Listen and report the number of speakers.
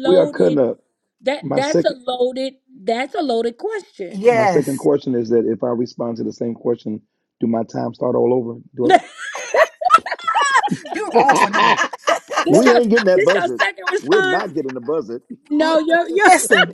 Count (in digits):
3